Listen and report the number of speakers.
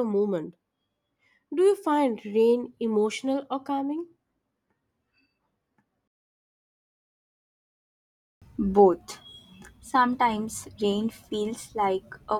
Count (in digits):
2